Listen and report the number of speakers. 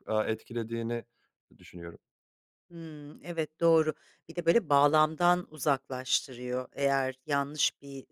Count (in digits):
2